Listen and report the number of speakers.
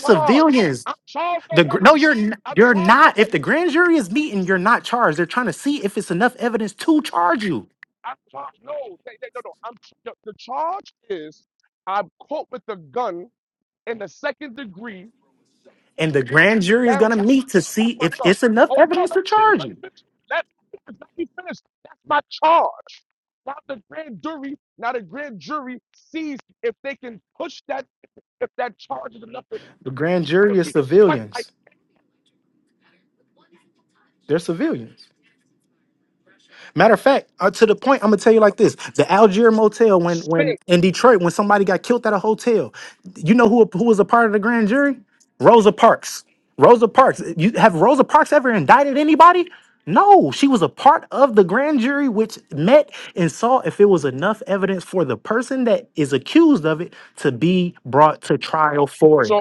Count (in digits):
2